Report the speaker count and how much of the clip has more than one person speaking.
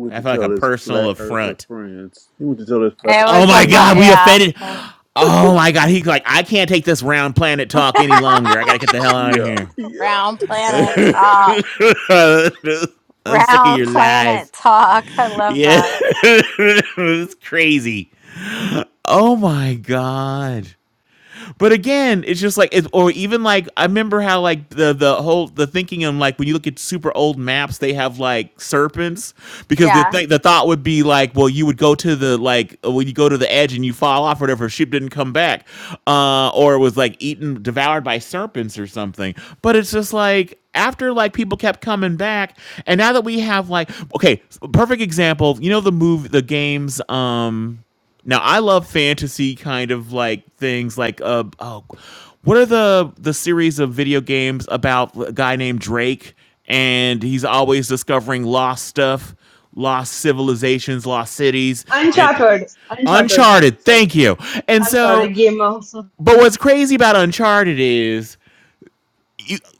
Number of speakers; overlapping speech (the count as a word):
four, about 9%